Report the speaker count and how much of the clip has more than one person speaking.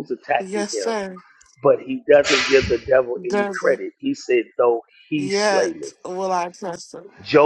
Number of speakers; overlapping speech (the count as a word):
two, about 21%